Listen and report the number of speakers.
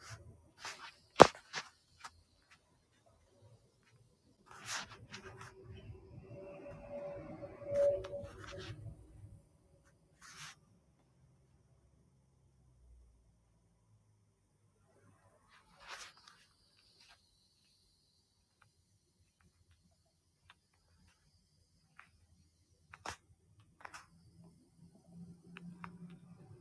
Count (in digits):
0